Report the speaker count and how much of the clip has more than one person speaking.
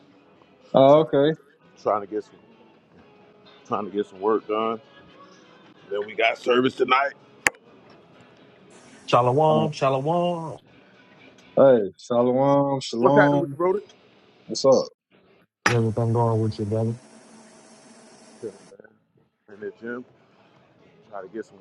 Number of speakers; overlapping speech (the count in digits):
3, about 5%